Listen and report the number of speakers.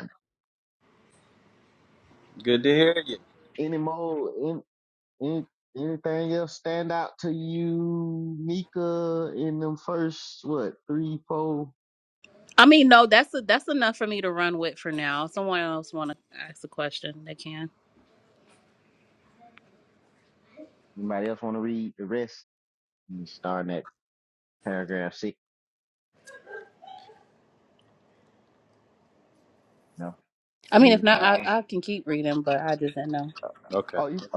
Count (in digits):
3